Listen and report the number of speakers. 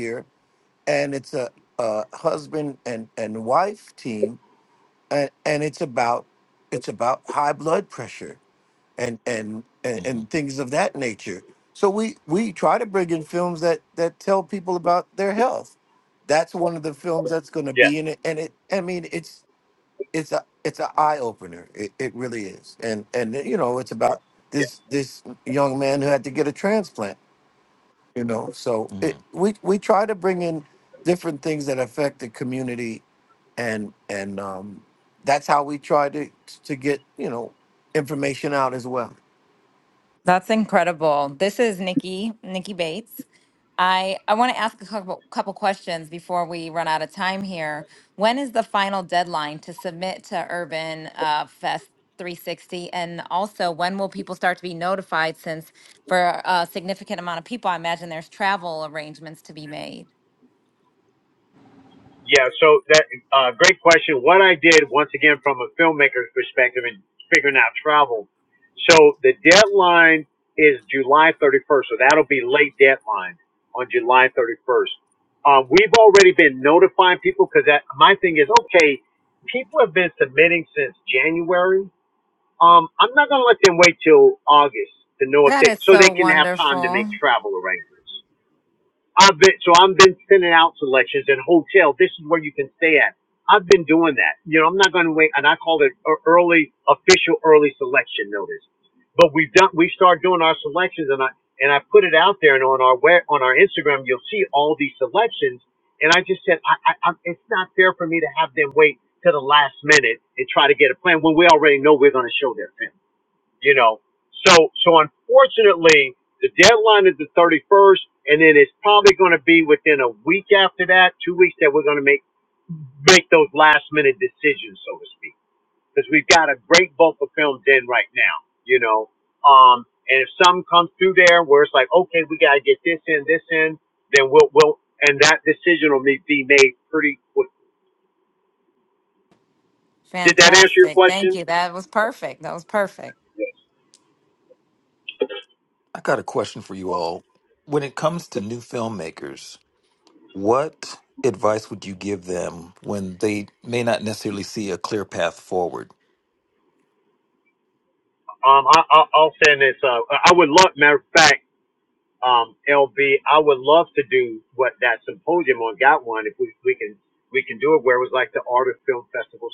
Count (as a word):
four